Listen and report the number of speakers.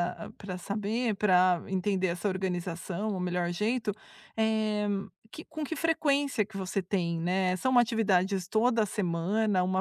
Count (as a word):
one